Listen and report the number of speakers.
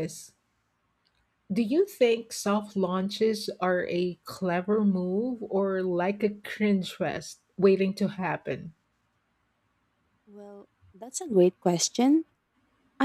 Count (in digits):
2